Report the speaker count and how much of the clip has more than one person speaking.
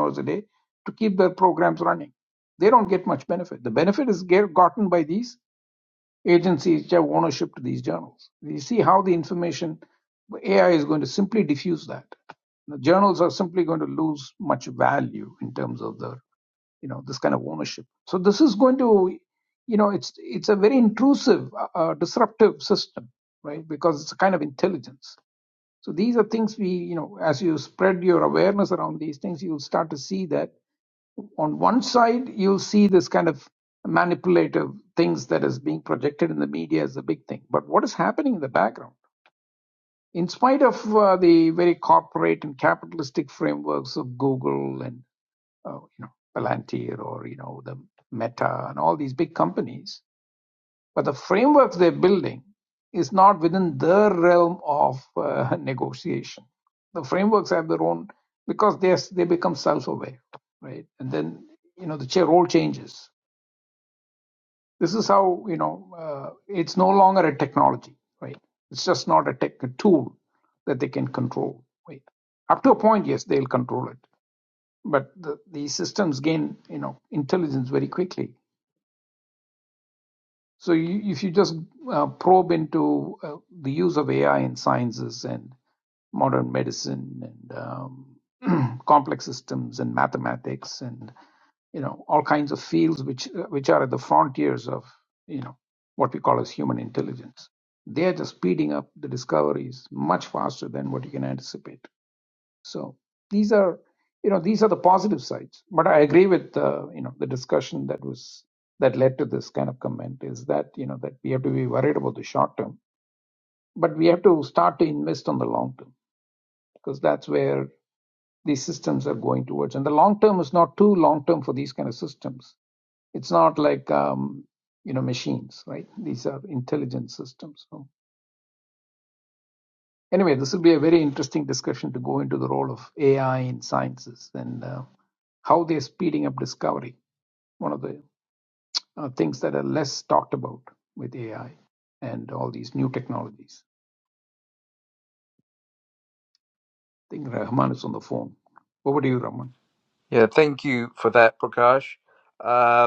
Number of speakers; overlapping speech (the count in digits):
2, no overlap